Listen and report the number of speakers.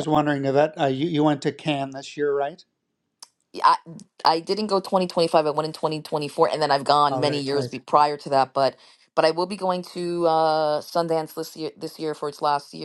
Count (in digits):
2